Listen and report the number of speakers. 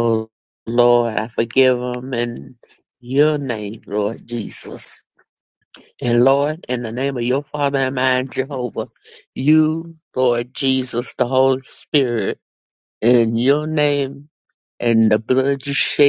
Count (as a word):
one